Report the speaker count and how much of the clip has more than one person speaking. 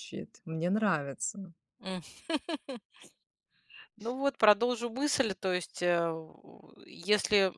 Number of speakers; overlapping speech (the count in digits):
2, no overlap